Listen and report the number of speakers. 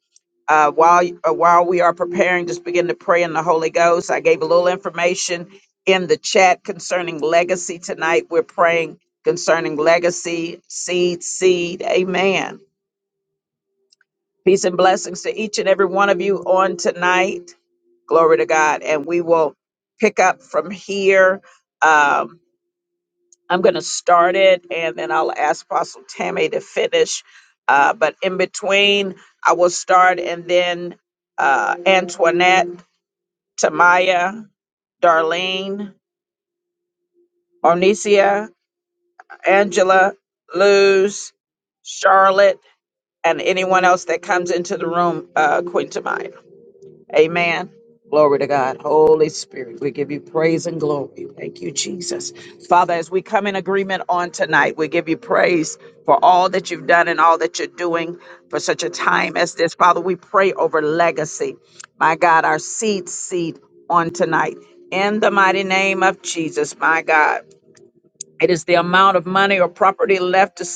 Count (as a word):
one